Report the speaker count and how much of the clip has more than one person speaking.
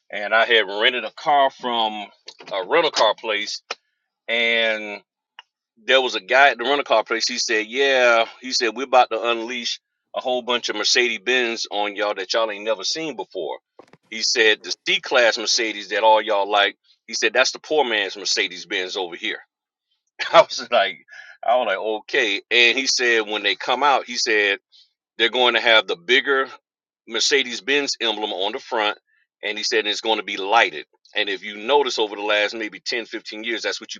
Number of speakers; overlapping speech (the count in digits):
1, no overlap